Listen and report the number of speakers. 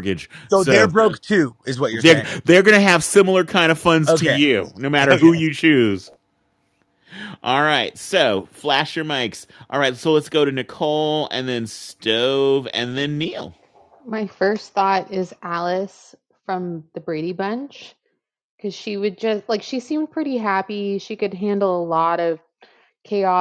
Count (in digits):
3